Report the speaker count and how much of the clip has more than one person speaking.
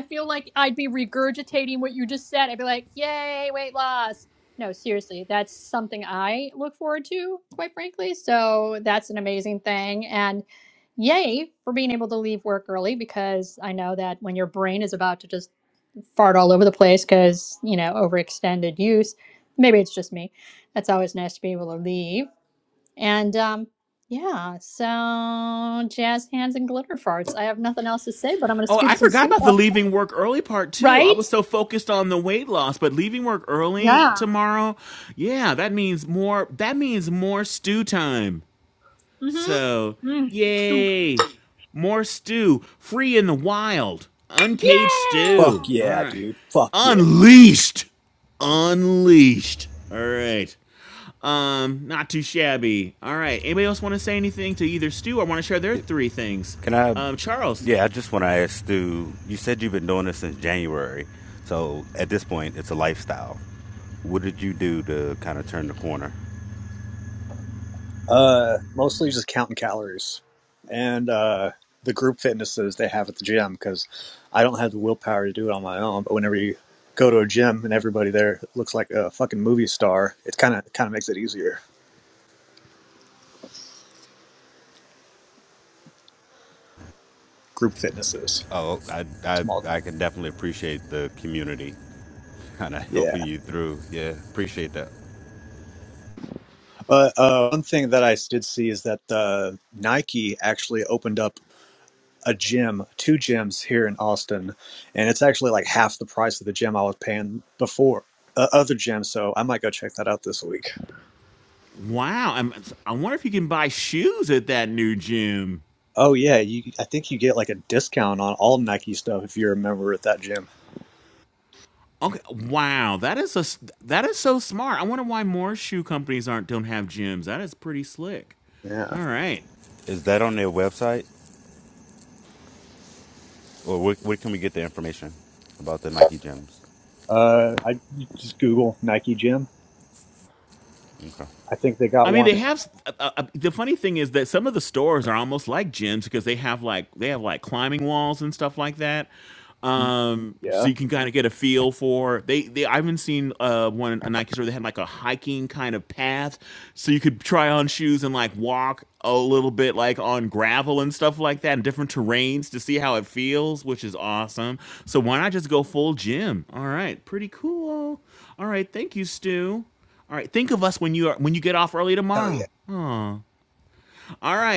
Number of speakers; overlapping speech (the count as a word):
four, about 4%